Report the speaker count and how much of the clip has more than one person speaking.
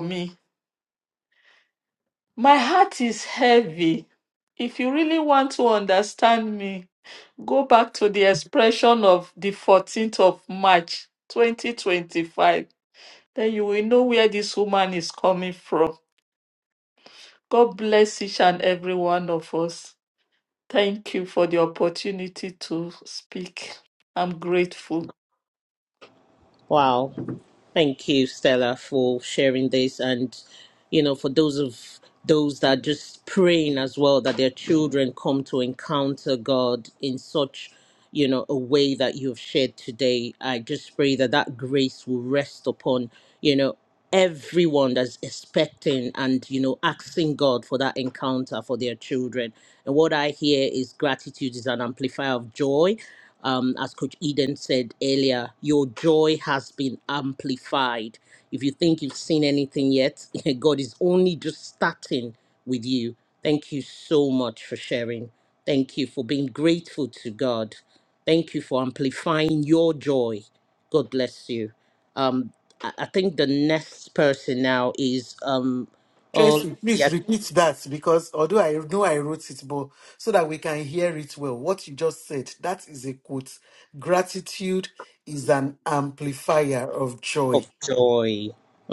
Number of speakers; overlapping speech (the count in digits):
3, about 1%